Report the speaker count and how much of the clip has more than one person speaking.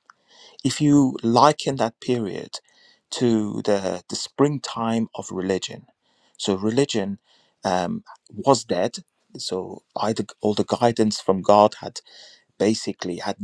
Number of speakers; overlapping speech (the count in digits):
1, no overlap